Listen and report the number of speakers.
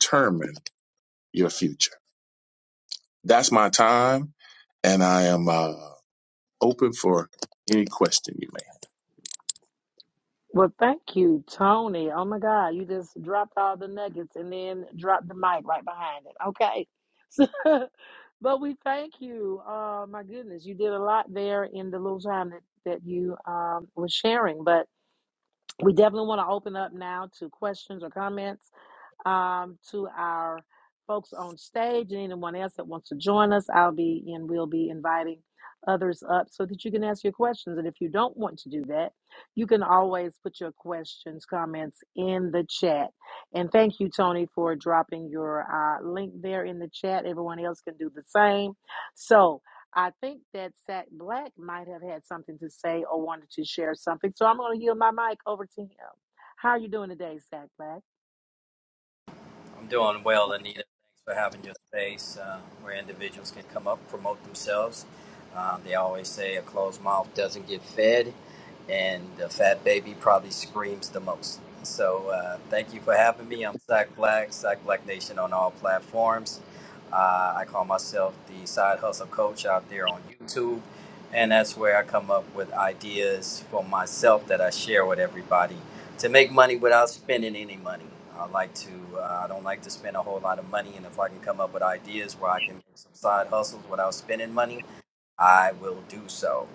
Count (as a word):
three